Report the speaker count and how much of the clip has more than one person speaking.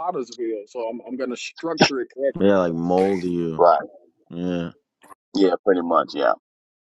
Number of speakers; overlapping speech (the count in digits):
3, under 1%